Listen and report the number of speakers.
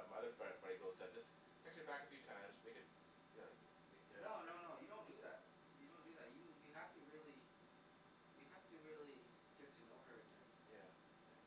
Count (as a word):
two